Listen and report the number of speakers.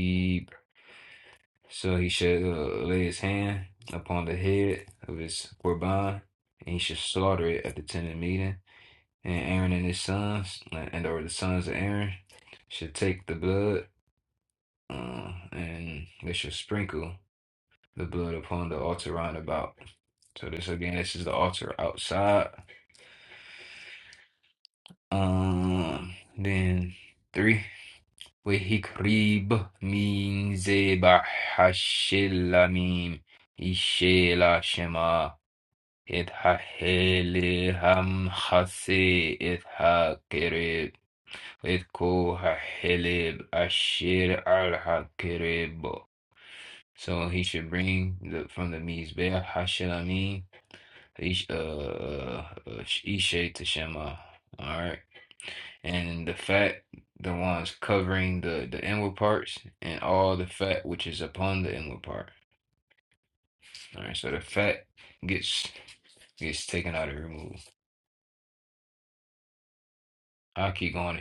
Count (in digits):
1